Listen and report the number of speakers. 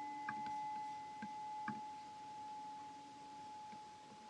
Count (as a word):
zero